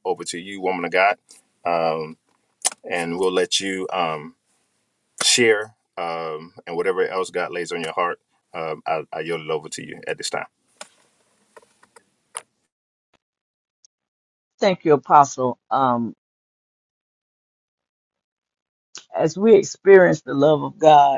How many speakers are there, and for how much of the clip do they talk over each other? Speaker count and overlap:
2, no overlap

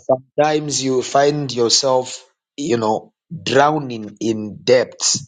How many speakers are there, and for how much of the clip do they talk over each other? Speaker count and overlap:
1, no overlap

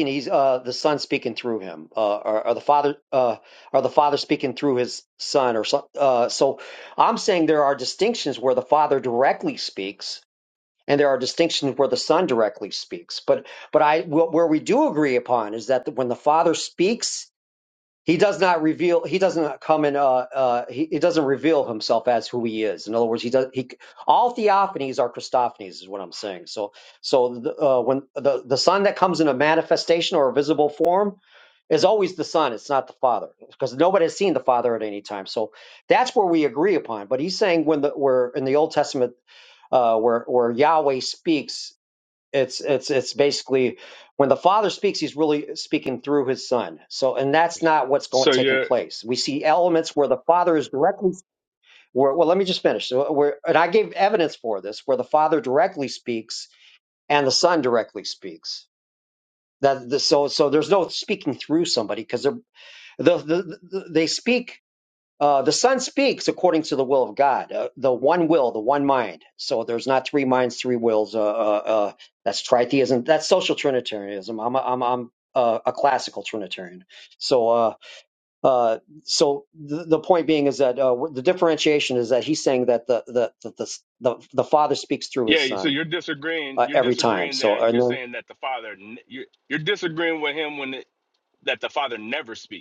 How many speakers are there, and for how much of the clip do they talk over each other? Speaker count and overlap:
2, about 3%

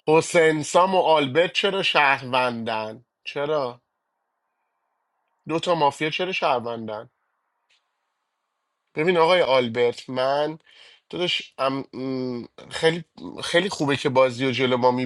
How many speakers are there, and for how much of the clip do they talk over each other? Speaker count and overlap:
1, no overlap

